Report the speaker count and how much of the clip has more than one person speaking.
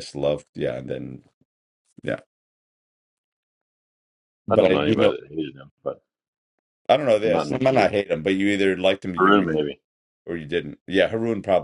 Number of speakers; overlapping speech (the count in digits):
2, about 16%